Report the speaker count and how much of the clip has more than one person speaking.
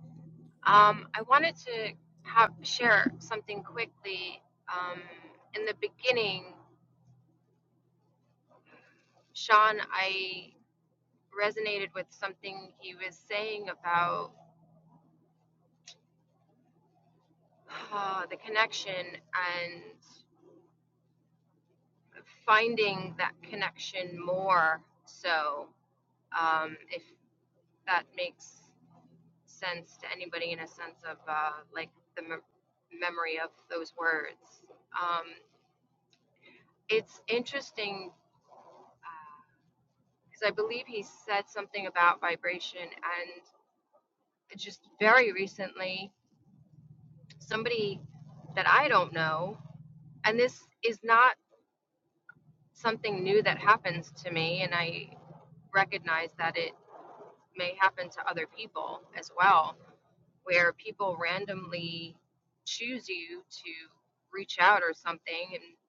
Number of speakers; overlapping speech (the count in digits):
1, no overlap